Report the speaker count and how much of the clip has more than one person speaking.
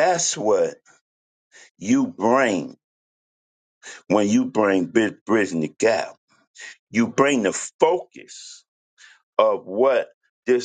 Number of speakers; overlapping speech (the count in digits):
1, no overlap